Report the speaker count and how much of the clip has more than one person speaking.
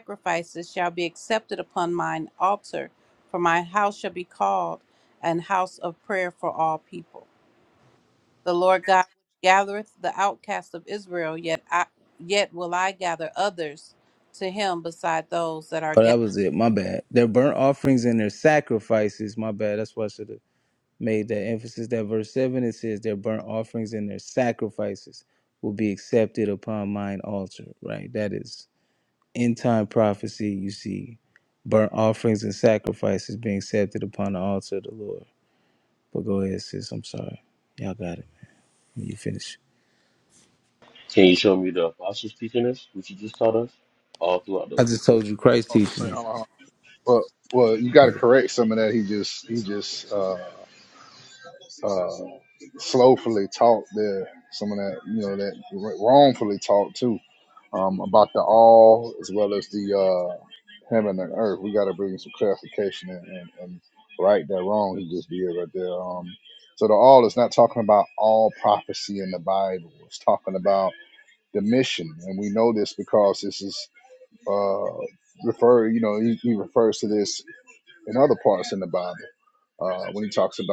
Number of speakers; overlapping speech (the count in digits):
4, about 2%